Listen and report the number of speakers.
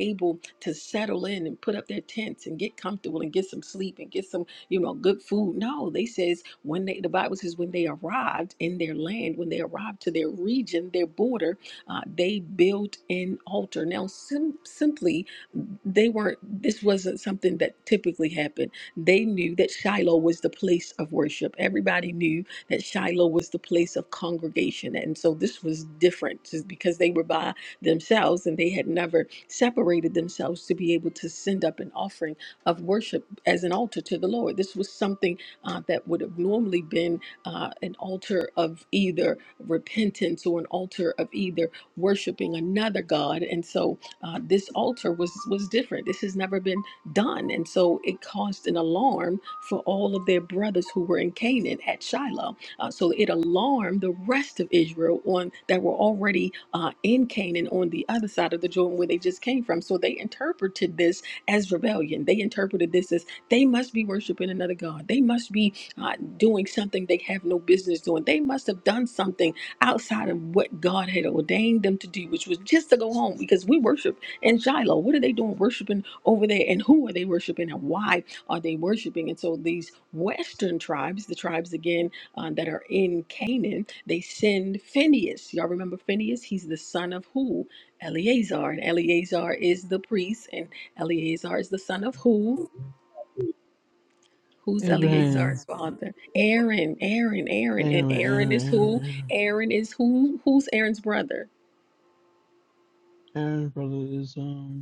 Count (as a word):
two